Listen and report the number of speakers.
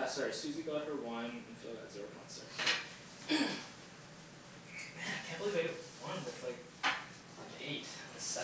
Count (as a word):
one